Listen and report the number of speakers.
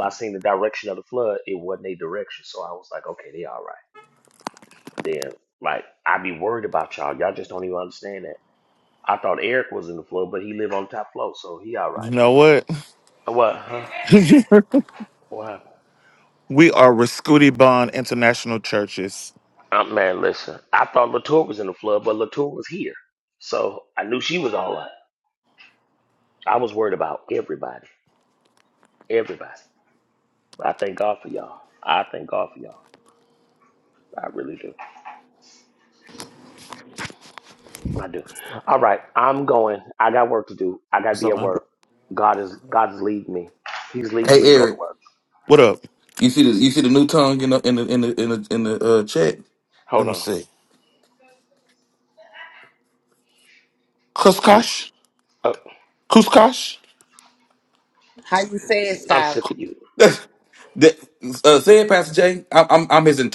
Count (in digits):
4